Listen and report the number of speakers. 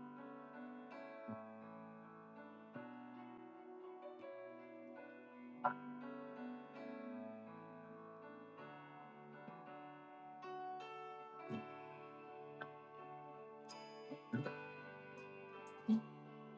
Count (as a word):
zero